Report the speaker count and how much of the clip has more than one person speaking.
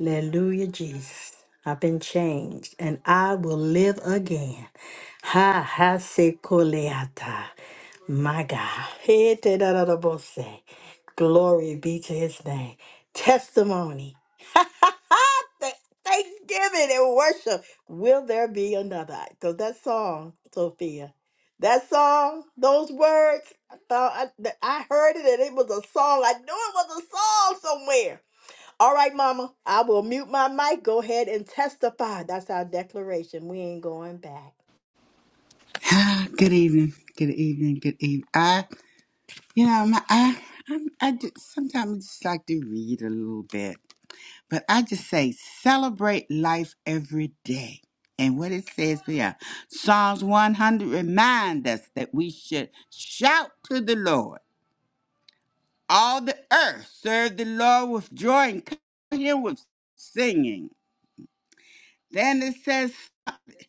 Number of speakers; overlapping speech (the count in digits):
2, no overlap